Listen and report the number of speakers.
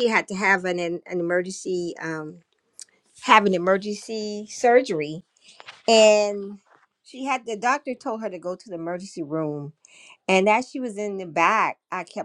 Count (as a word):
one